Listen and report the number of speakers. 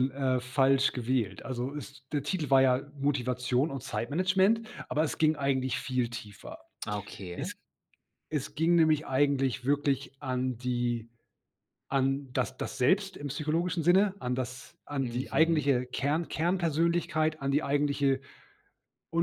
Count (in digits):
2